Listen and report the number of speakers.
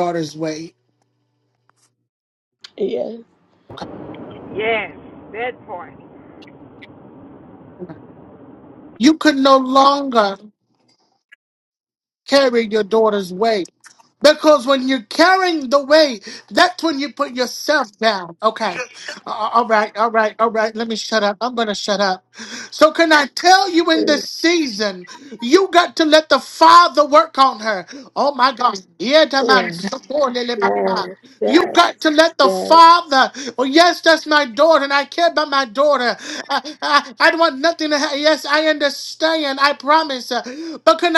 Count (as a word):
three